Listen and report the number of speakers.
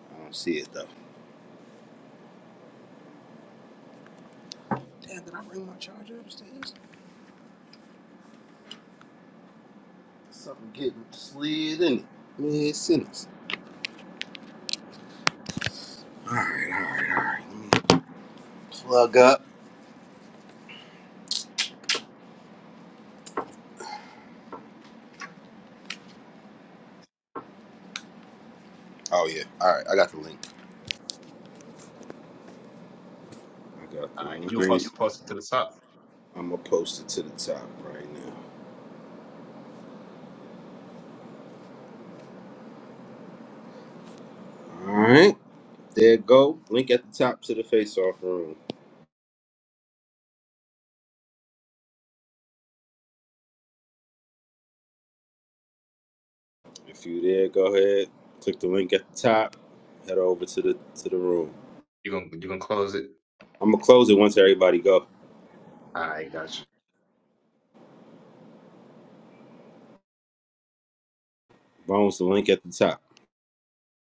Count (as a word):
two